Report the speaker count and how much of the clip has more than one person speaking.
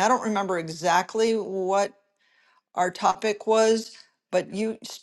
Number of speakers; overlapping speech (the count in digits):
1, no overlap